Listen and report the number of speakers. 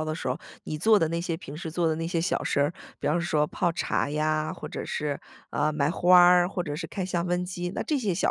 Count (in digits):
1